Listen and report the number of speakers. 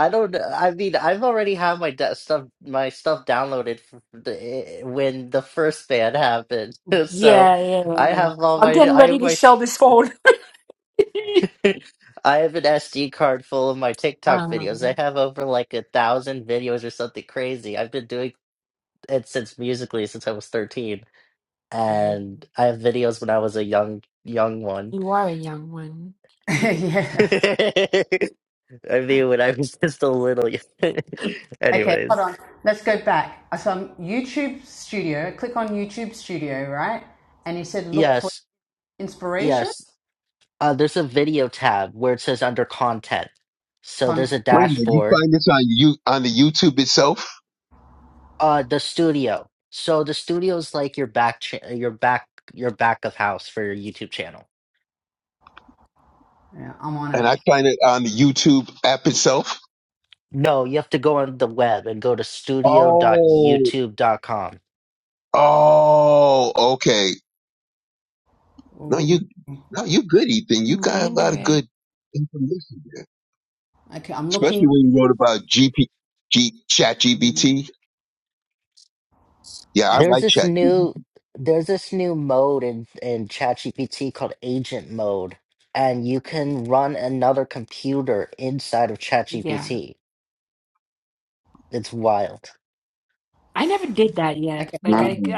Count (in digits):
4